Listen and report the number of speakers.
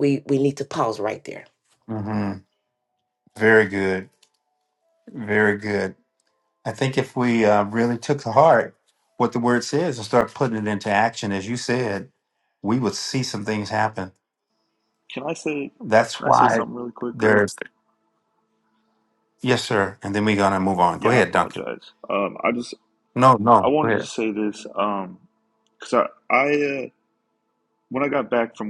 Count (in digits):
3